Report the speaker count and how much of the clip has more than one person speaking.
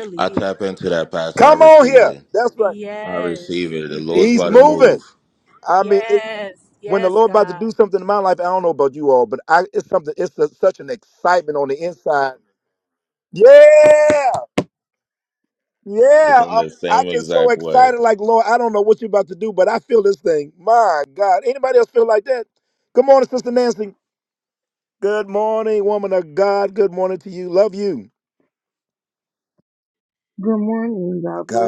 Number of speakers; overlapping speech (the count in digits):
4, about 18%